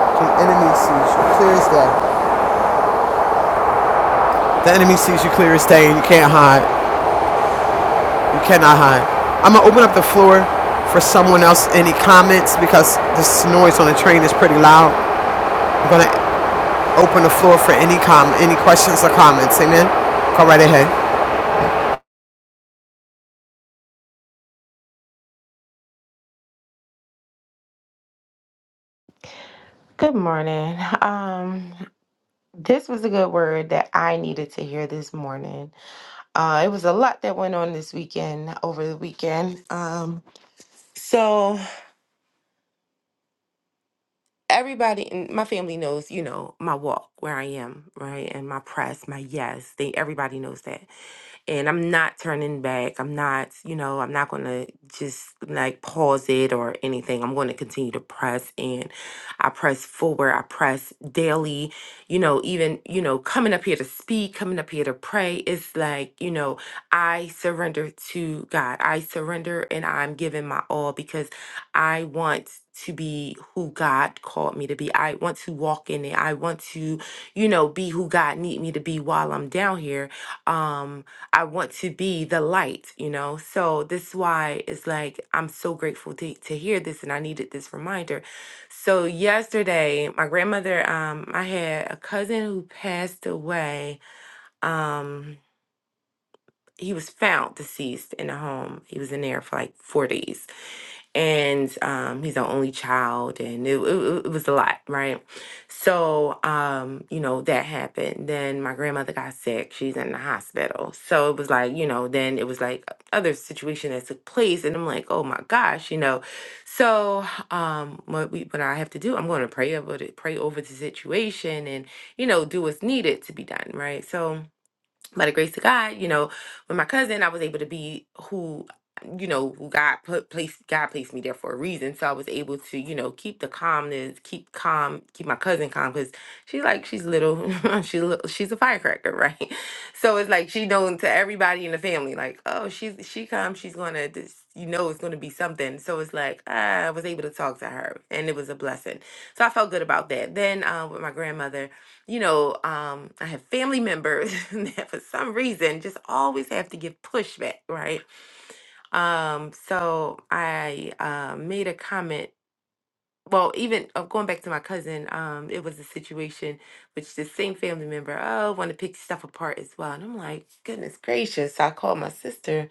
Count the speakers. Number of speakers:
two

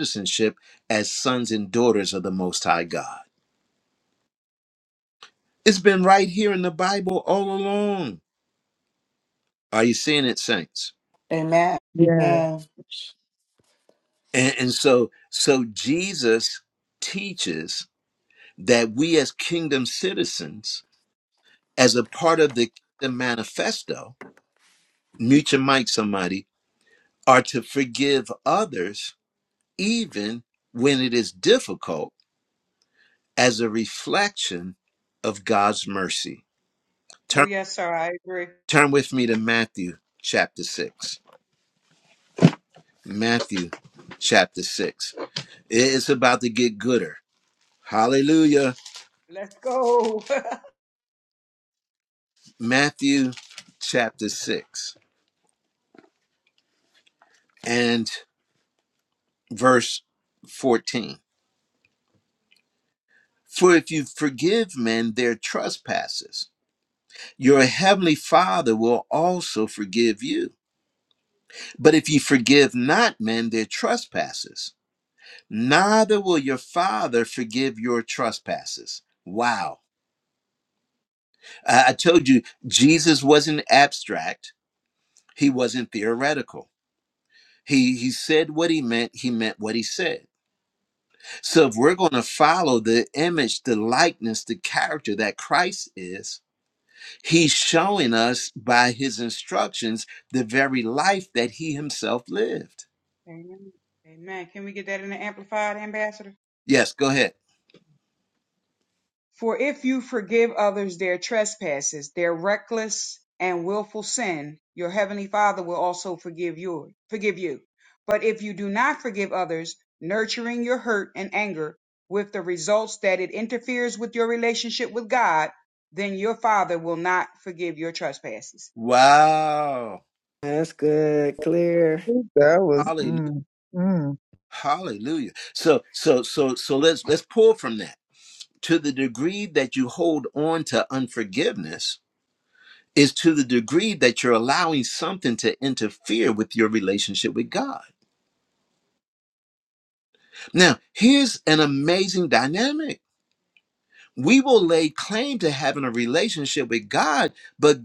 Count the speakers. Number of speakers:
five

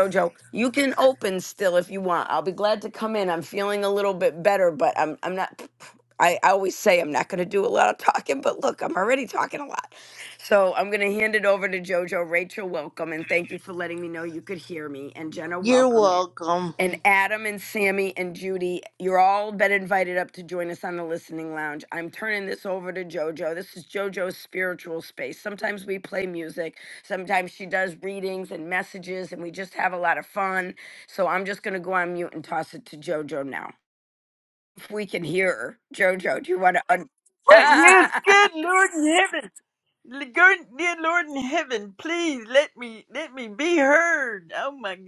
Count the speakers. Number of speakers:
three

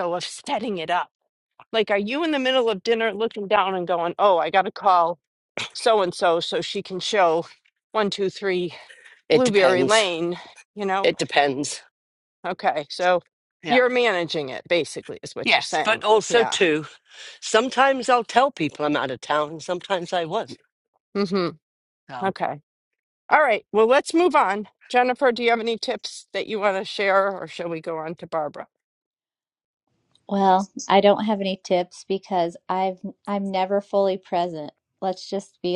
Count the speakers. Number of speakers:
three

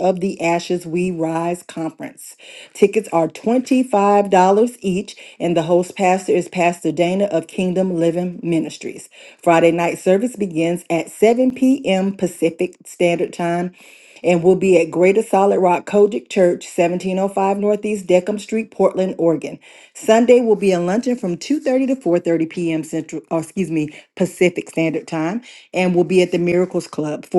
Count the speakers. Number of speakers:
one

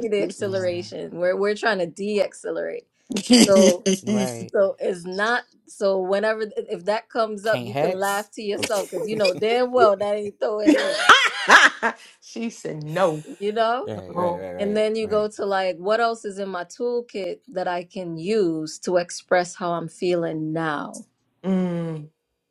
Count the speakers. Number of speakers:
three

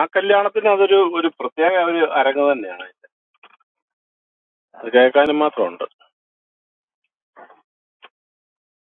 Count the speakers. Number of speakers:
one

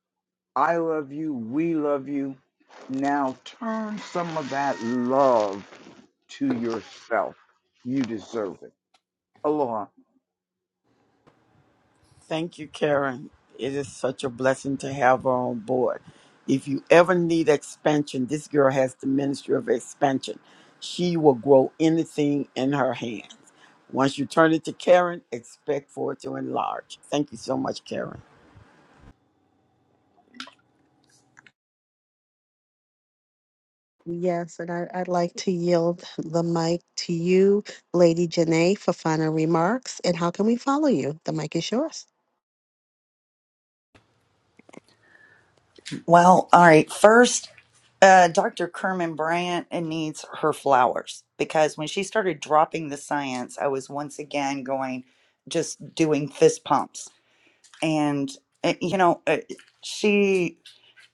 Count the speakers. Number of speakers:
four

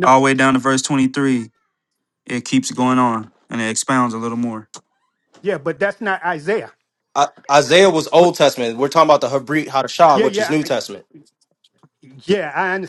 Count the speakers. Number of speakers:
three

